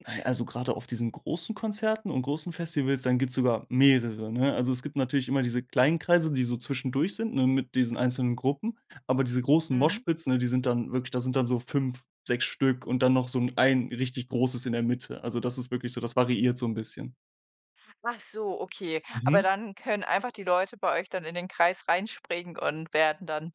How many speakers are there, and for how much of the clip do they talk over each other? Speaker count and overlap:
2, about 2%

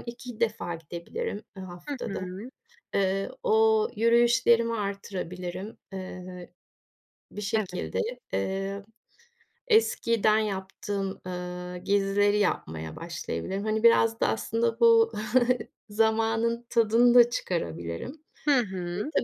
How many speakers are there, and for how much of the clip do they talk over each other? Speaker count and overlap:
2, about 4%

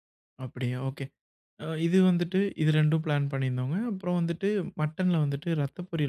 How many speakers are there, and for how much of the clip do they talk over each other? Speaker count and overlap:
1, no overlap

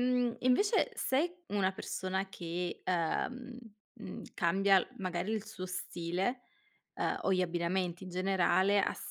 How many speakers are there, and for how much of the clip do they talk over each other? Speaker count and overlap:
1, no overlap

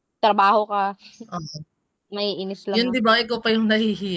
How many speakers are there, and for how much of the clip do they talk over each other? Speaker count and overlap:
2, about 5%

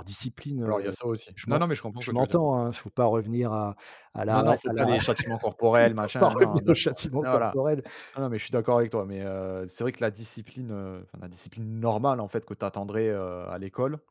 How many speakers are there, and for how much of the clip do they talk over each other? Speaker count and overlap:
2, about 24%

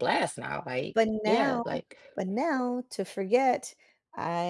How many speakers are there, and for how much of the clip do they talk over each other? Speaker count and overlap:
2, about 16%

